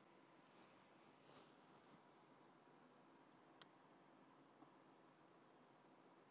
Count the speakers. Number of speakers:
0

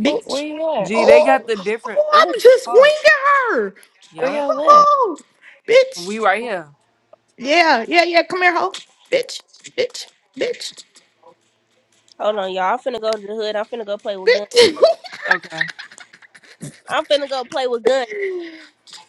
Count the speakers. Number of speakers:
4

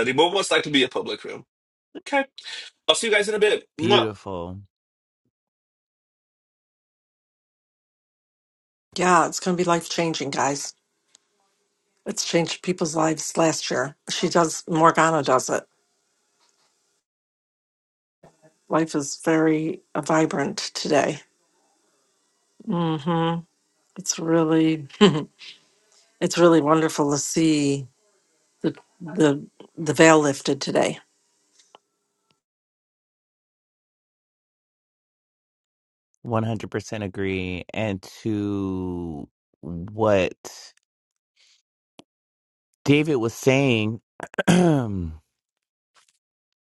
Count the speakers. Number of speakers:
3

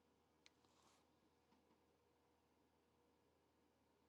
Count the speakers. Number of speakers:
0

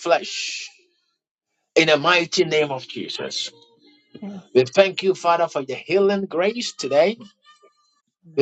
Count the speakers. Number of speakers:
1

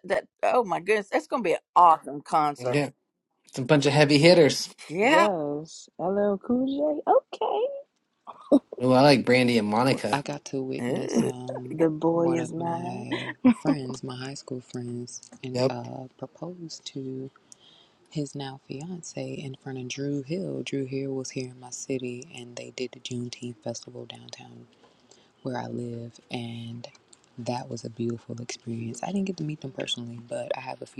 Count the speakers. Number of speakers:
4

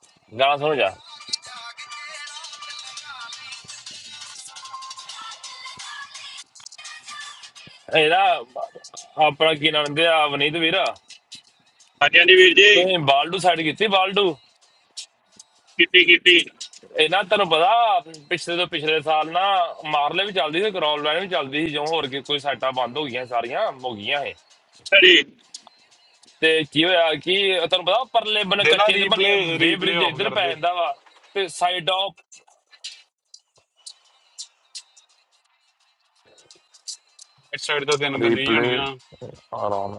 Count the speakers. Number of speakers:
3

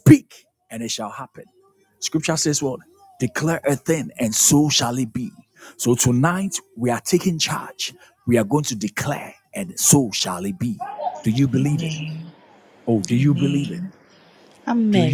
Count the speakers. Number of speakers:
2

